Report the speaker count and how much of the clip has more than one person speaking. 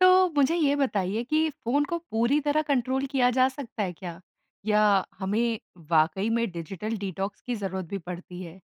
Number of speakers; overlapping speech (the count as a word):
one, no overlap